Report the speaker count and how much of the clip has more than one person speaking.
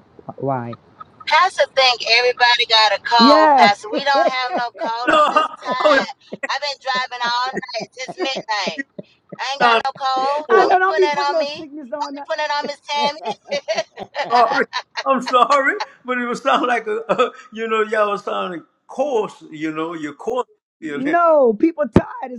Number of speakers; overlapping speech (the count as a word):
three, about 16%